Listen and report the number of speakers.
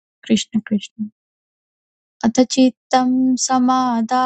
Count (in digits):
1